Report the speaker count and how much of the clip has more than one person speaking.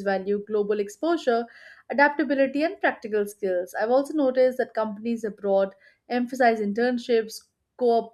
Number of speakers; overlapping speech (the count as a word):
one, no overlap